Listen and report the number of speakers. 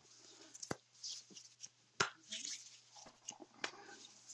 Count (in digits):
0